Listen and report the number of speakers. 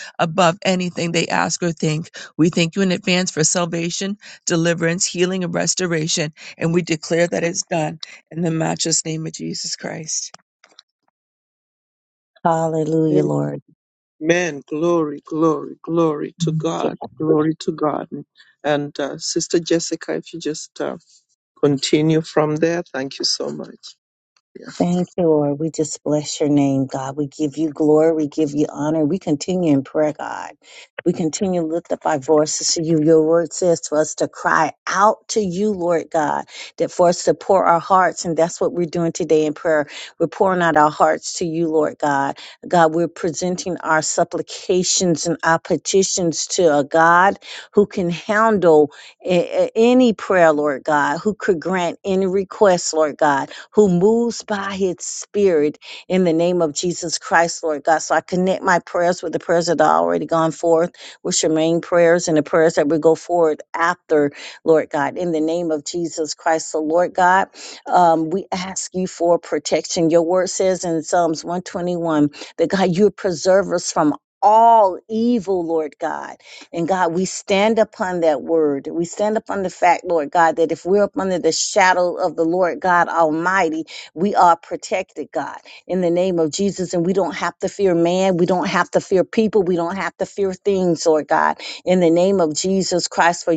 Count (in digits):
3